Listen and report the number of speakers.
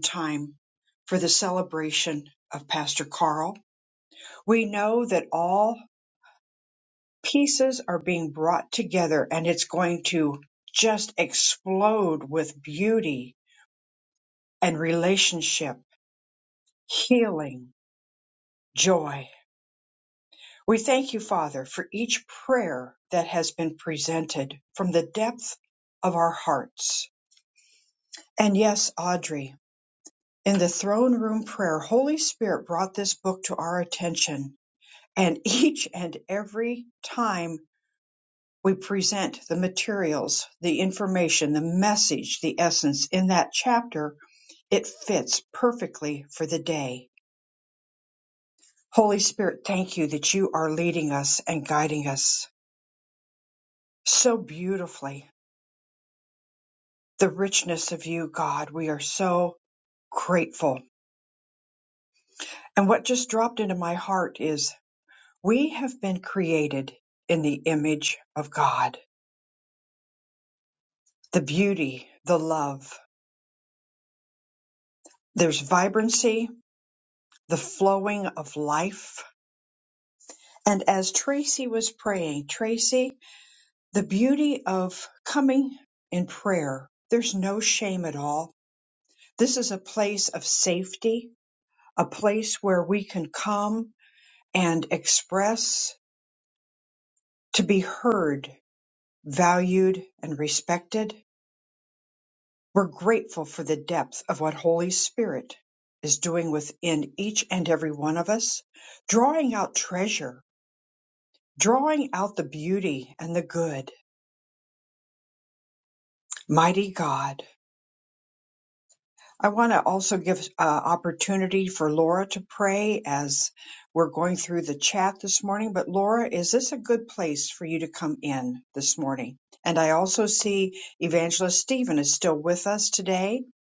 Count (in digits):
1